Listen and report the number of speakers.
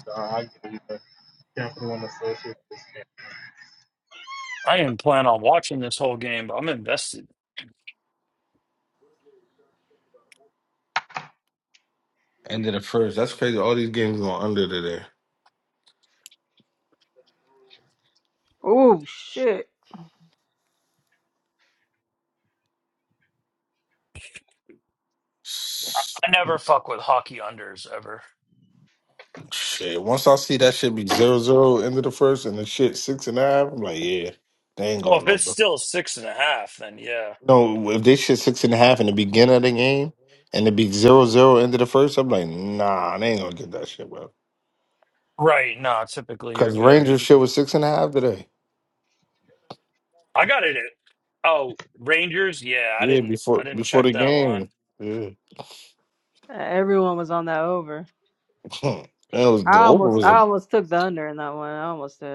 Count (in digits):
4